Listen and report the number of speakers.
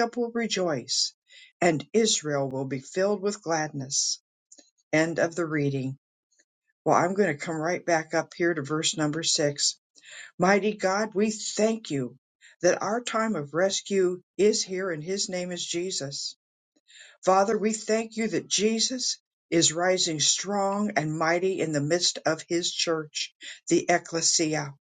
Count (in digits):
1